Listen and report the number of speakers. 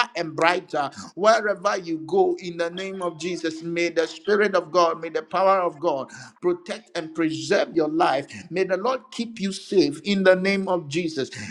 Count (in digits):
1